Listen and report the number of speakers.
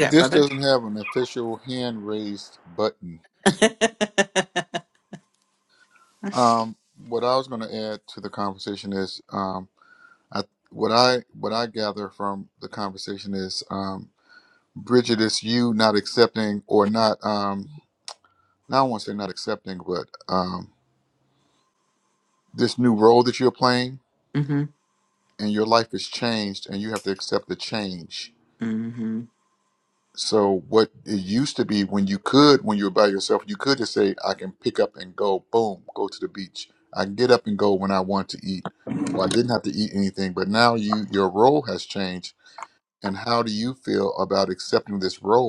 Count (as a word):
two